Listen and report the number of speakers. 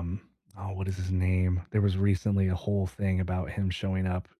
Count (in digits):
1